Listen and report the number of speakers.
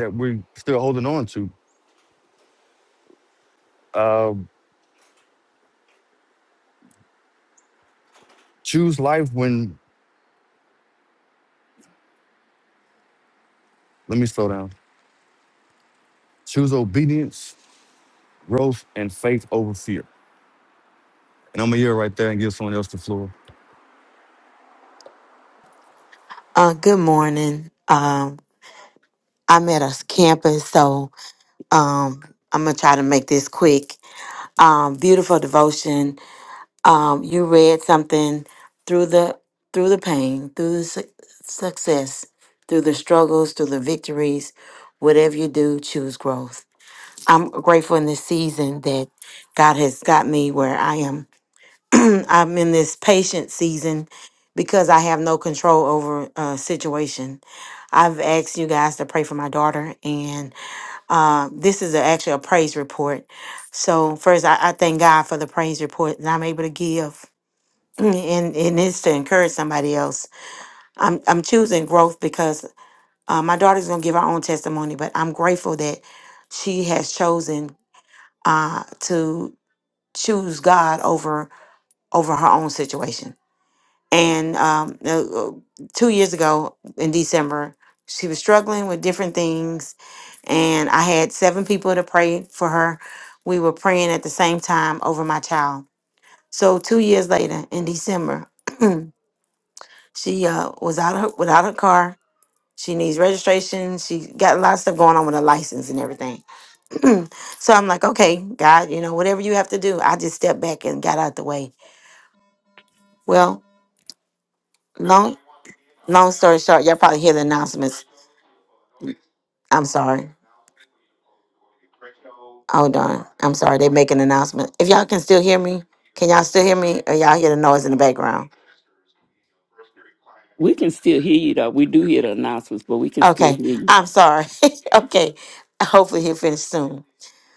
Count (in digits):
3